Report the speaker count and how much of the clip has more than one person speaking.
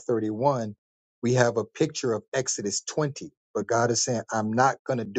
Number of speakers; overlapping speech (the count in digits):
1, no overlap